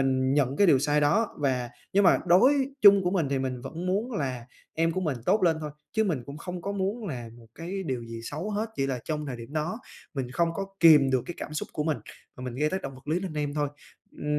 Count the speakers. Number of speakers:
1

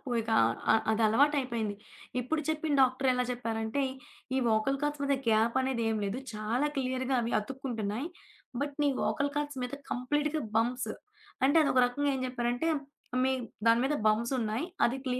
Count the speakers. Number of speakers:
1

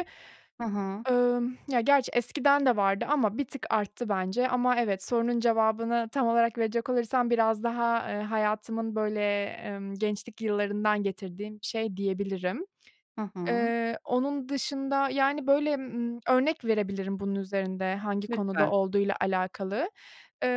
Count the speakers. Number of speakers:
2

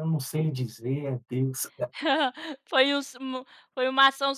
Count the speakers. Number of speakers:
2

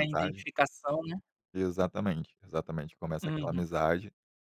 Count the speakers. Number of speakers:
2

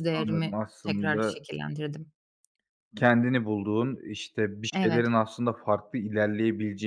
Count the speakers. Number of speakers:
2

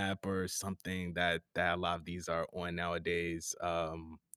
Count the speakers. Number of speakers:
1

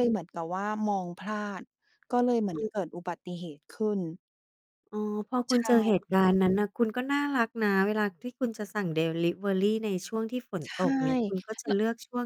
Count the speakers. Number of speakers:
2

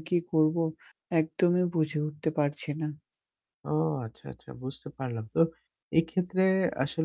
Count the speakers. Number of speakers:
2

